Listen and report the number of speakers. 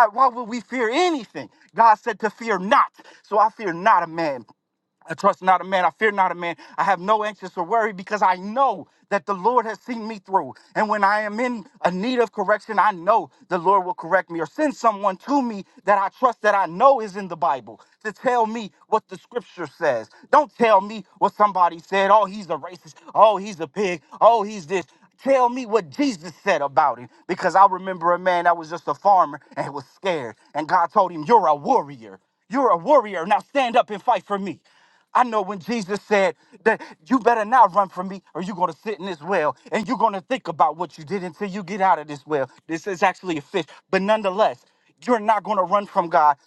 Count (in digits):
1